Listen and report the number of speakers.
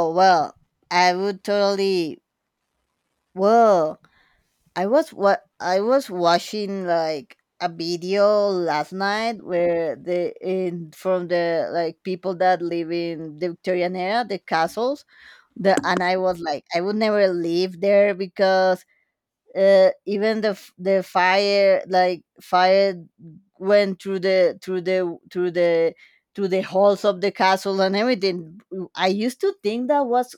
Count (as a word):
one